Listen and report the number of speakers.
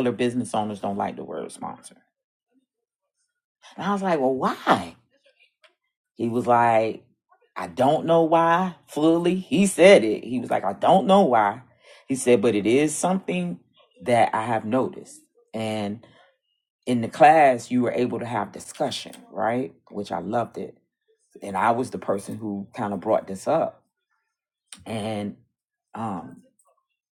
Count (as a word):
one